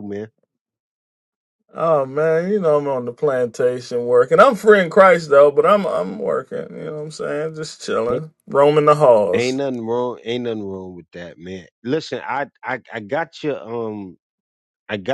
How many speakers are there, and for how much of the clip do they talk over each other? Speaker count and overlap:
two, about 1%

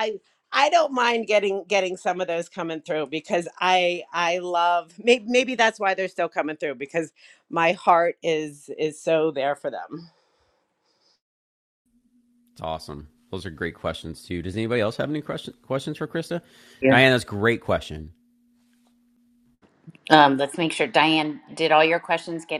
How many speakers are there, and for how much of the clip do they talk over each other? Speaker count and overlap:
three, about 1%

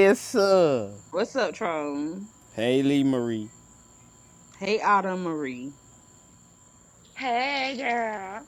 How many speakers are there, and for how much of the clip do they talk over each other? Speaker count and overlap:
three, no overlap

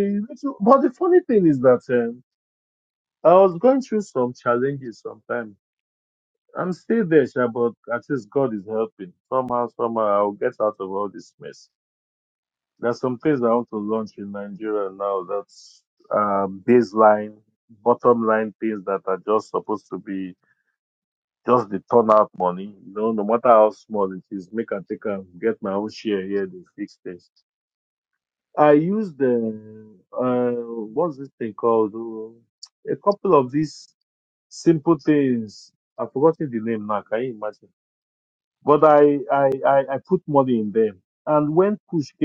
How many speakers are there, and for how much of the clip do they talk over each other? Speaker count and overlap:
one, no overlap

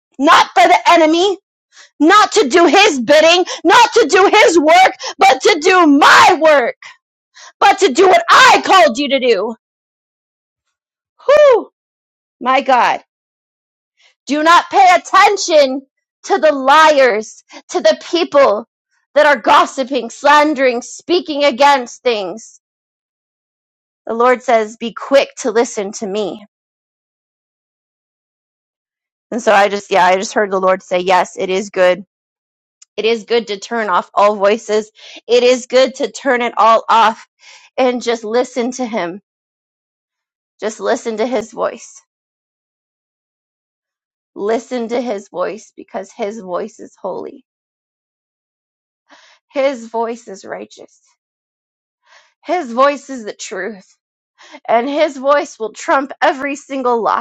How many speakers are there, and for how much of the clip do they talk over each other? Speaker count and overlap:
one, no overlap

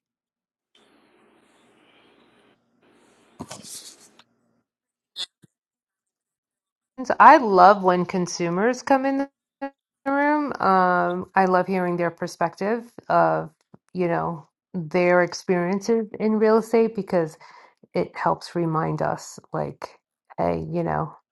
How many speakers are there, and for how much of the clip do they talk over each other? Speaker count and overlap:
one, no overlap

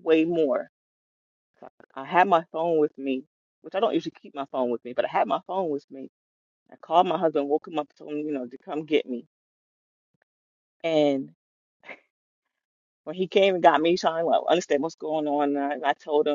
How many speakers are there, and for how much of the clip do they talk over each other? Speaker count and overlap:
one, no overlap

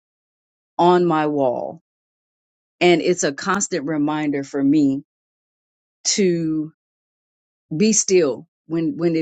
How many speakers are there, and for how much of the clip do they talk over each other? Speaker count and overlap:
one, no overlap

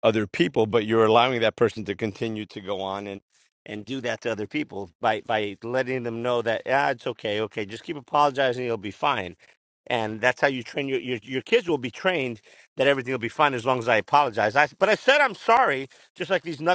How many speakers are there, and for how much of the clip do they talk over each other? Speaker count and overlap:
one, no overlap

